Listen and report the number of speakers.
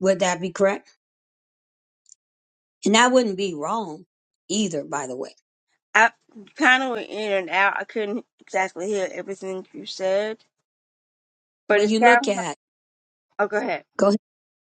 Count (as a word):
two